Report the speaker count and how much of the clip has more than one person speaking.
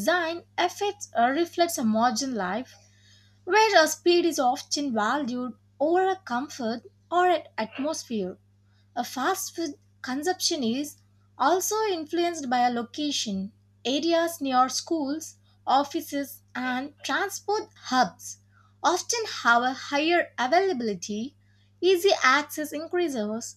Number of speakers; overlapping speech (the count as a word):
one, no overlap